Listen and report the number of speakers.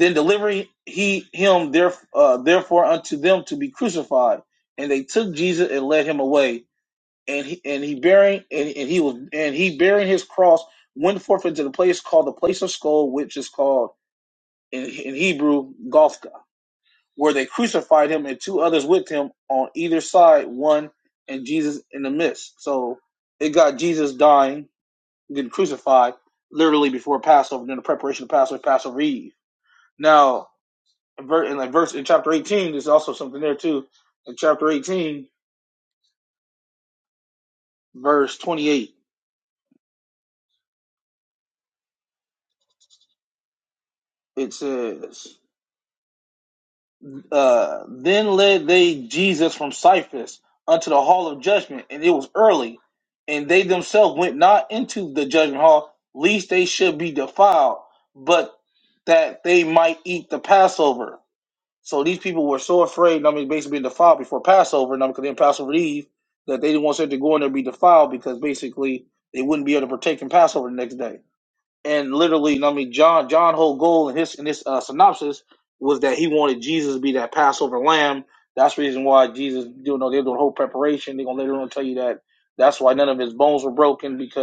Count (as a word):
one